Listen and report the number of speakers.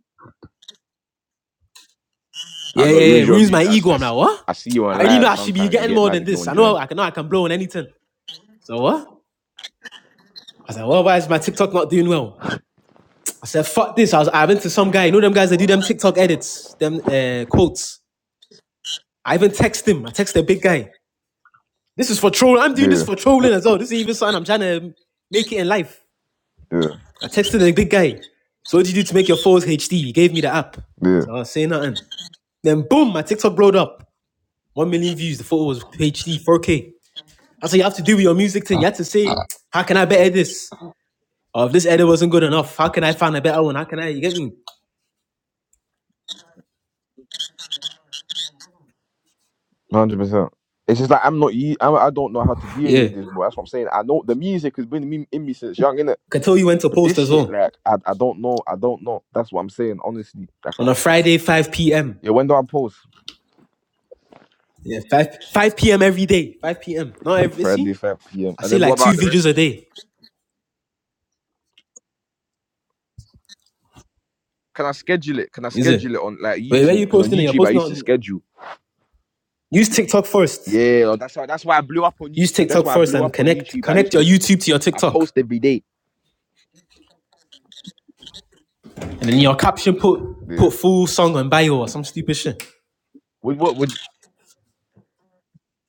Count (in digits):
2